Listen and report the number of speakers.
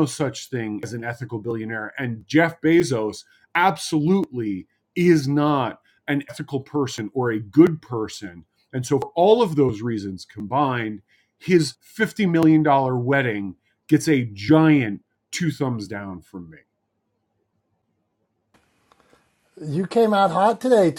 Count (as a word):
two